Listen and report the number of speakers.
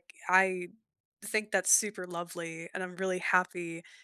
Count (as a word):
one